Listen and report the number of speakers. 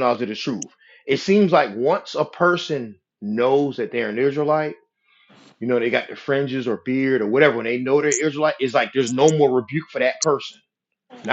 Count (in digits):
1